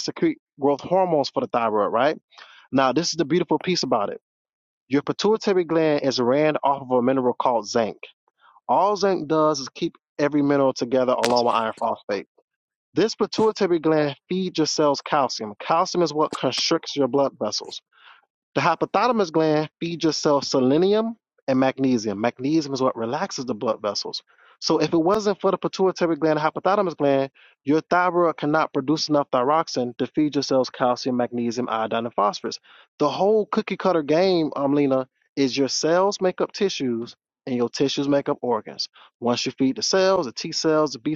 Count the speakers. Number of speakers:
one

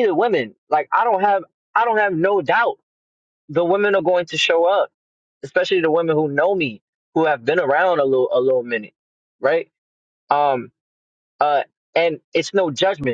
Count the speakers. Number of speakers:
one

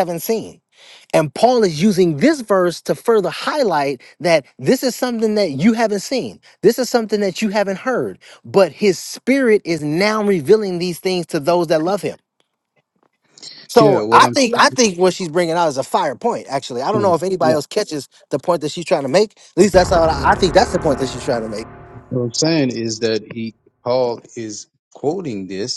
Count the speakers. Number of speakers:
two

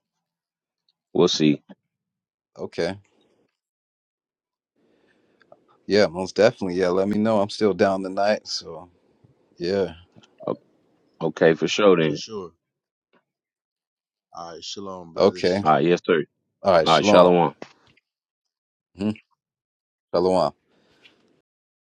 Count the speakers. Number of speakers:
three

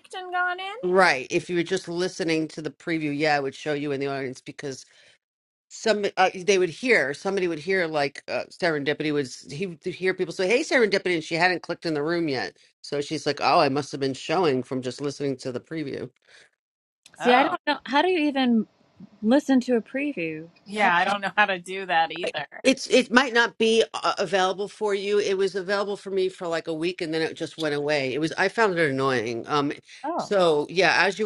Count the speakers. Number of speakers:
three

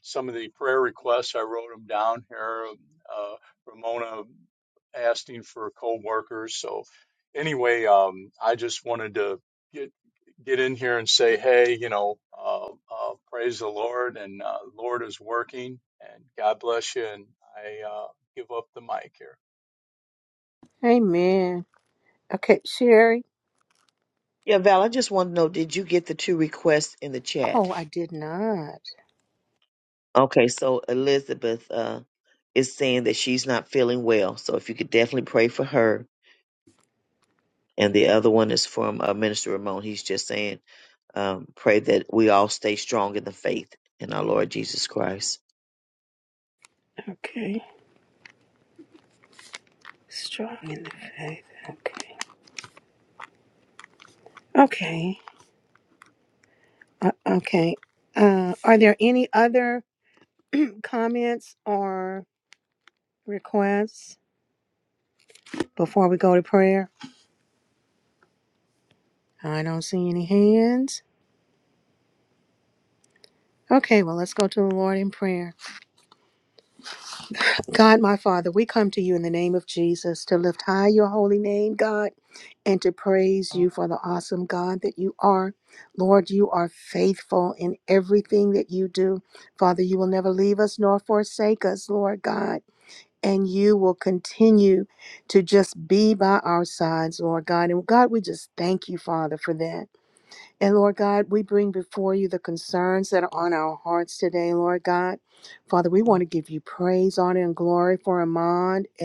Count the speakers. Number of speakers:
three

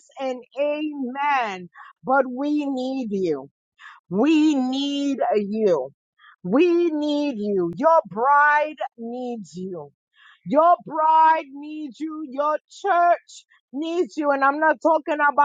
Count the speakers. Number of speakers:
one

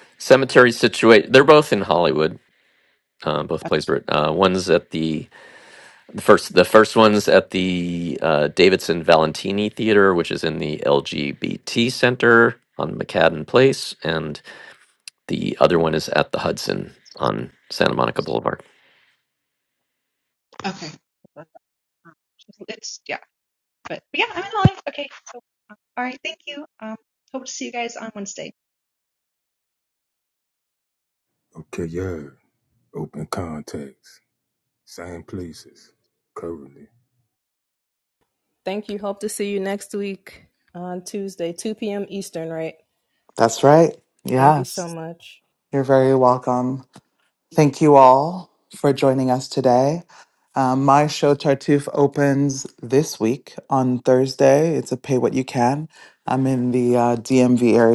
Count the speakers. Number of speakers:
five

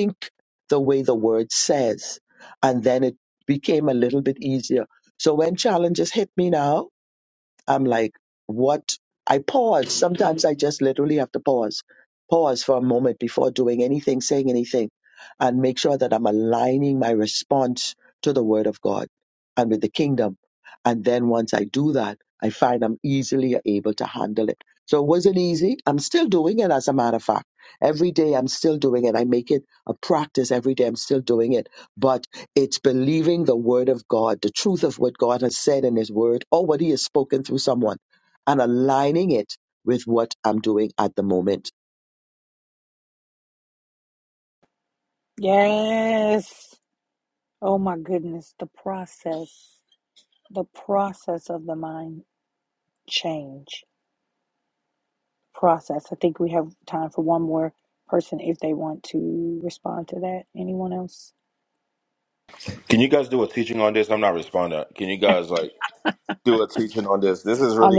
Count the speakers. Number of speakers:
three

